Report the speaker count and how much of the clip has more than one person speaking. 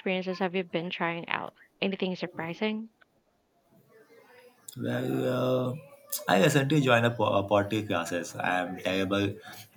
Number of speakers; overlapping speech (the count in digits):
2, no overlap